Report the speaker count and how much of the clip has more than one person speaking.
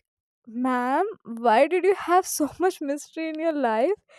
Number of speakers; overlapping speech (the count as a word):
one, no overlap